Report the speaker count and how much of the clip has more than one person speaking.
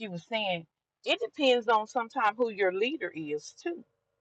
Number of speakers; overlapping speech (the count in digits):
1, no overlap